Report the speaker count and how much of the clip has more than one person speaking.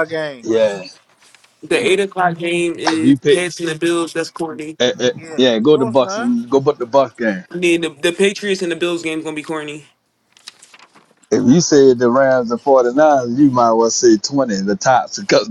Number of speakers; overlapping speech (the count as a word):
three, about 9%